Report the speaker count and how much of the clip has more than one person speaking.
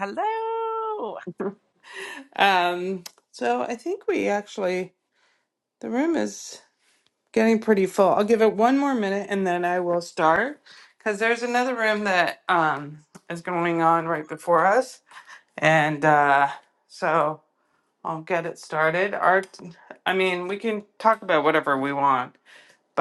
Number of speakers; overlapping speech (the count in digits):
2, no overlap